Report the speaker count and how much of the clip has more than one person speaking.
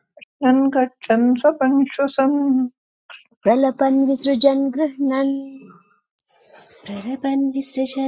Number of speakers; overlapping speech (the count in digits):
3, no overlap